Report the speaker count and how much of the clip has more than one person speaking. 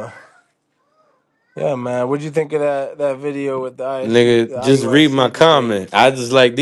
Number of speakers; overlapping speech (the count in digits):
2, about 27%